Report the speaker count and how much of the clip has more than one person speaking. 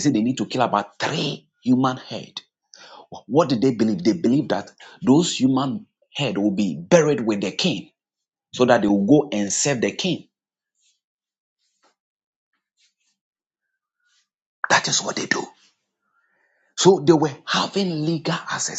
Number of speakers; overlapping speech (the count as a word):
one, no overlap